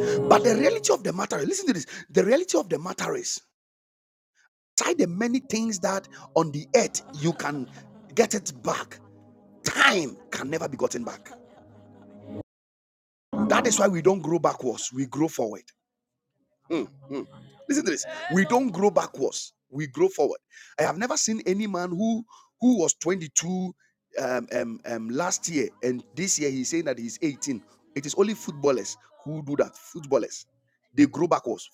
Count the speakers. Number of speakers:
1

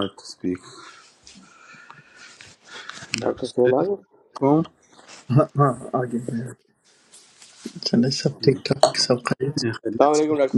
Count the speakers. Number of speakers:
3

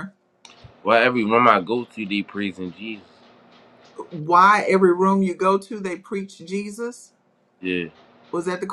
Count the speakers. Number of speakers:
2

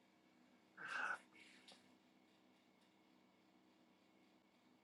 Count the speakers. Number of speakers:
0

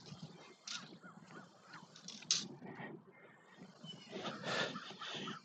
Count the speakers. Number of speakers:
0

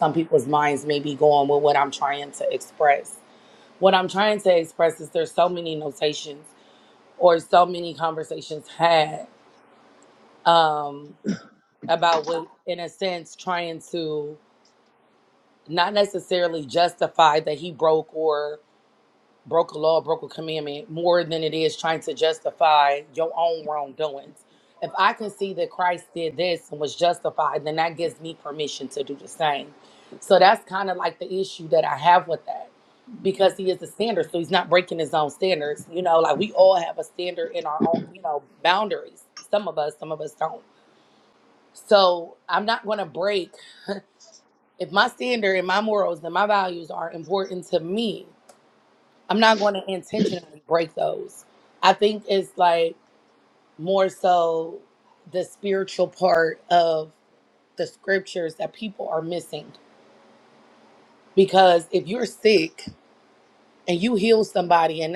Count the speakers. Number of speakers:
1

